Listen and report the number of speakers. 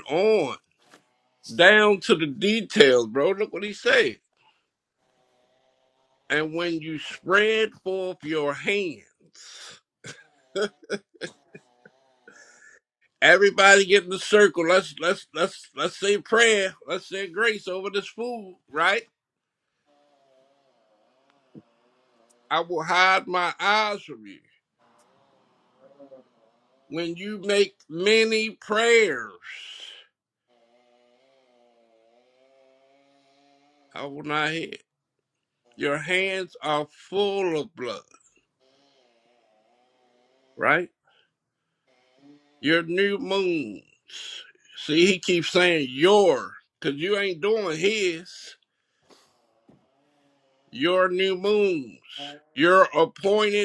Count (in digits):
1